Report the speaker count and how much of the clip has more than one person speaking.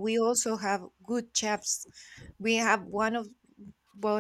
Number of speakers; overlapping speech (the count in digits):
1, no overlap